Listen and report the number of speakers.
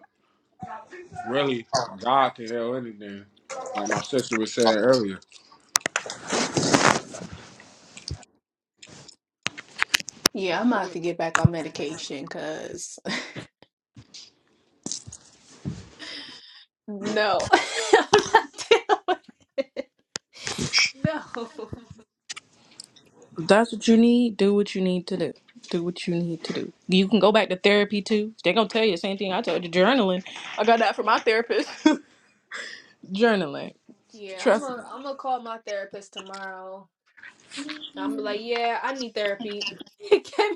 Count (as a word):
three